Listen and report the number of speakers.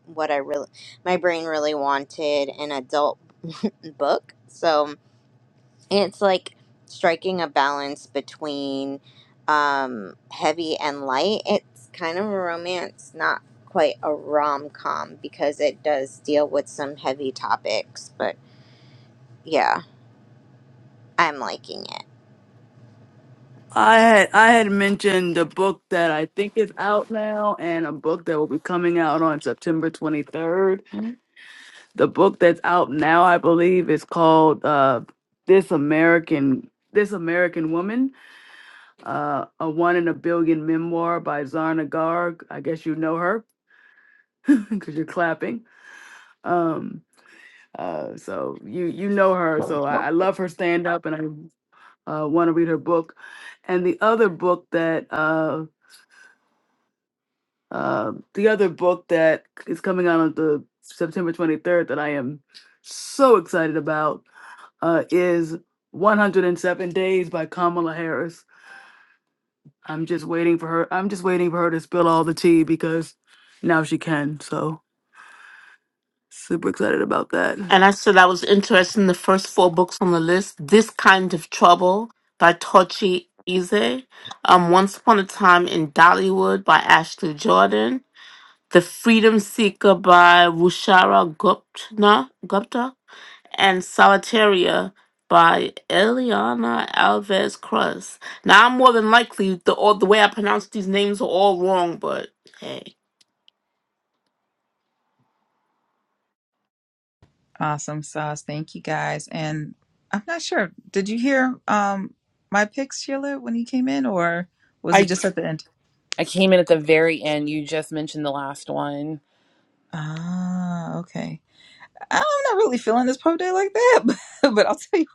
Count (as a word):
five